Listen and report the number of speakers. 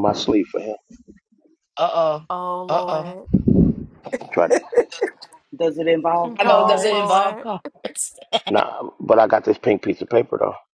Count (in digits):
4